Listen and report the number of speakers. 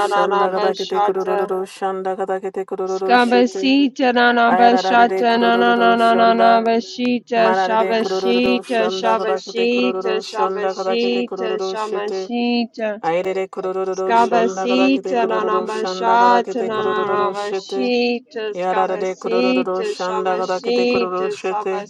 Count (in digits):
2